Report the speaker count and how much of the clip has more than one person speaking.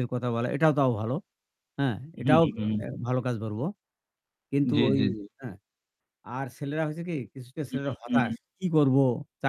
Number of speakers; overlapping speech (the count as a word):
two, about 15%